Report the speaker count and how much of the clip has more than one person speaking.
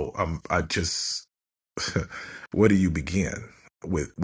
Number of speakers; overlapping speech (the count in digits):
1, no overlap